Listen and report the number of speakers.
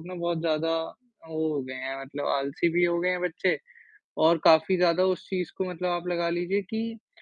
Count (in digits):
1